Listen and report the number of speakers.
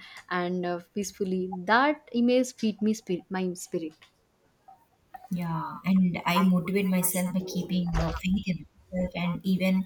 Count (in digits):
2